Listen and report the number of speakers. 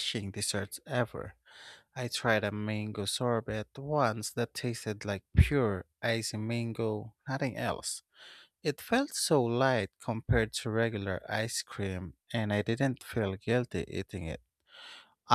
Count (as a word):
one